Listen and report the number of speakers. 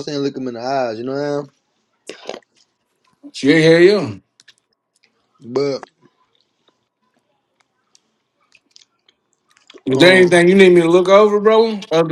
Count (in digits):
2